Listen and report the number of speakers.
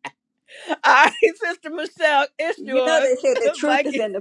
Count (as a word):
two